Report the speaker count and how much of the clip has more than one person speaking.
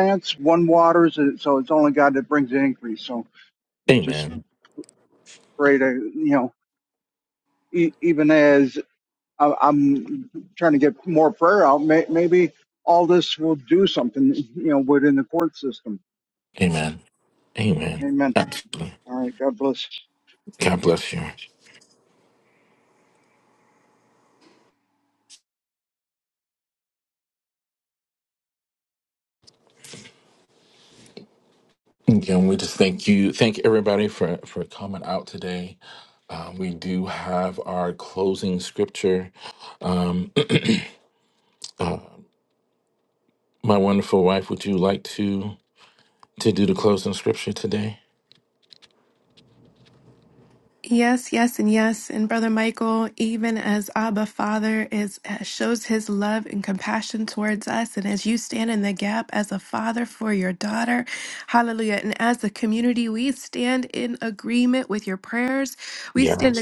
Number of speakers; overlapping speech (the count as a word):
three, about 1%